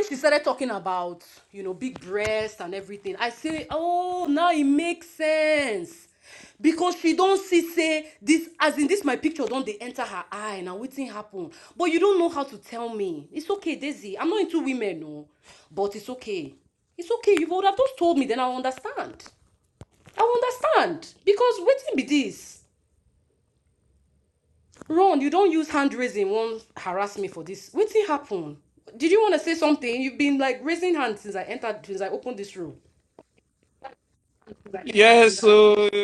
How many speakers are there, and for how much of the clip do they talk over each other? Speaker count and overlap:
2, no overlap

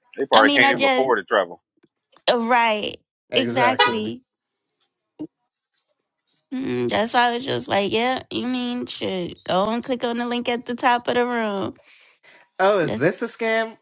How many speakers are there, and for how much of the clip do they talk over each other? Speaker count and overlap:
3, about 12%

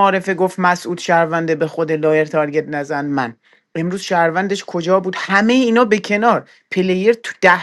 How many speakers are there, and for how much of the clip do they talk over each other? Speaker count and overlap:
1, no overlap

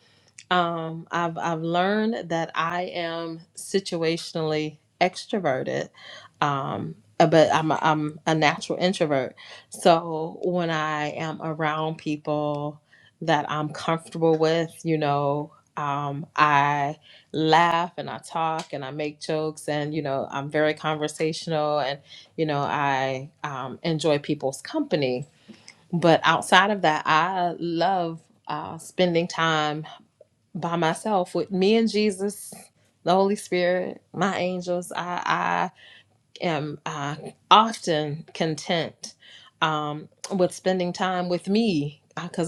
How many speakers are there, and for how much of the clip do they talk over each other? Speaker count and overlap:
1, no overlap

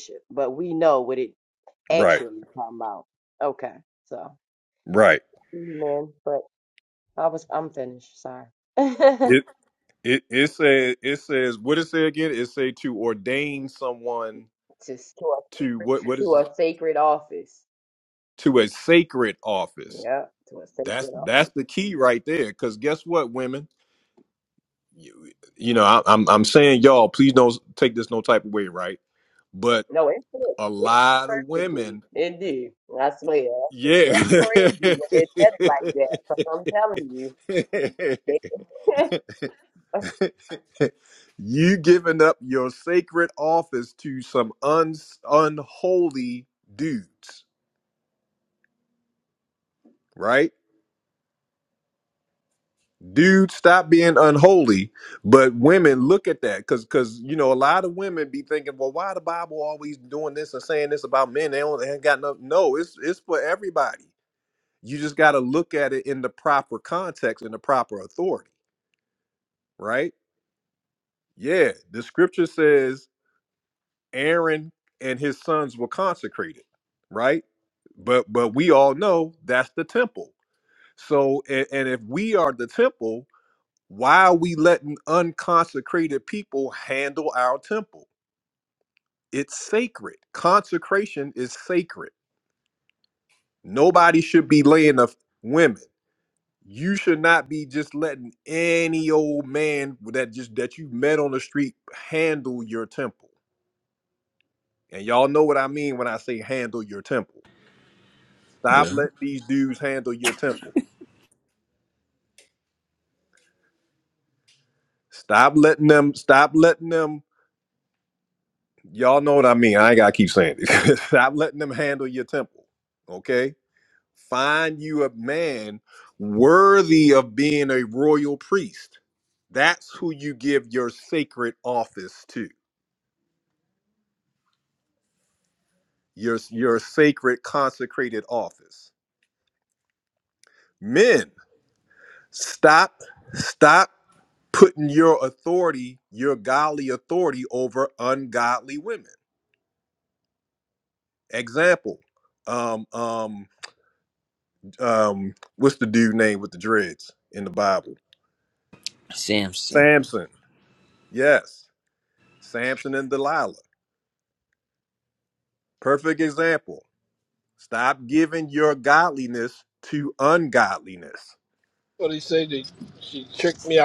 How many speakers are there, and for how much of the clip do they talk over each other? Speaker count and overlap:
4, about 2%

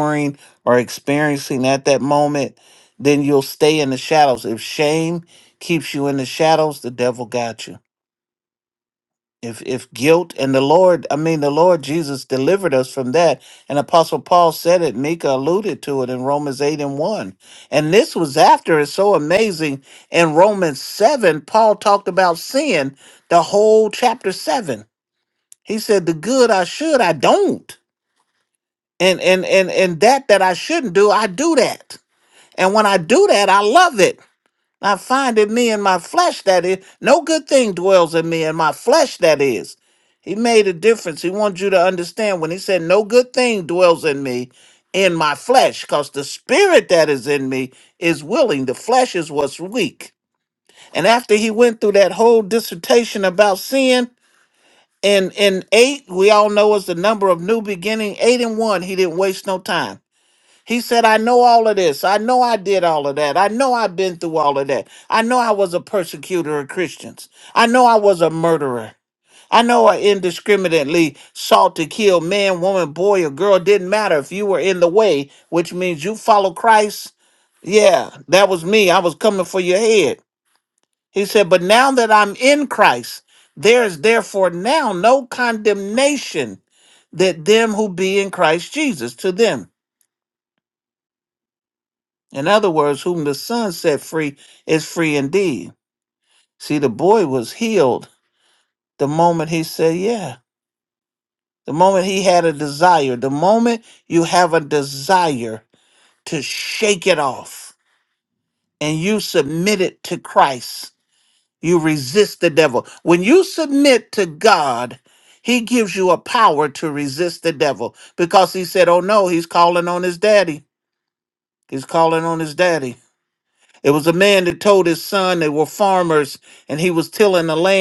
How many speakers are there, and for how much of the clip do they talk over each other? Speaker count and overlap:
1, no overlap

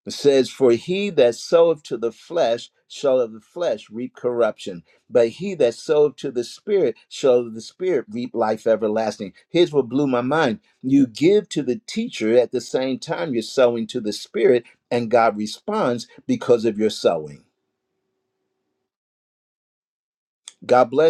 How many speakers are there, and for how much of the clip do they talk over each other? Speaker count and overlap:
1, no overlap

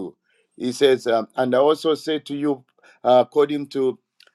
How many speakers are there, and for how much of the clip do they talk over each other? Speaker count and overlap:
1, no overlap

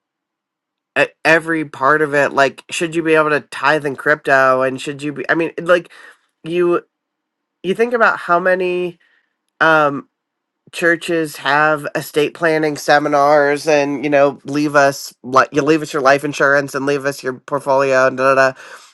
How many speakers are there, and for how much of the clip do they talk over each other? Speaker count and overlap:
1, no overlap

